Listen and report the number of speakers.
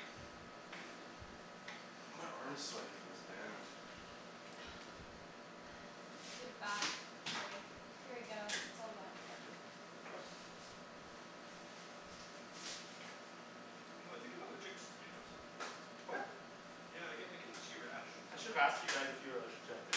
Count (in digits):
4